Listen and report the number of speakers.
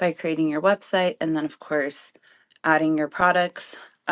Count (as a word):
one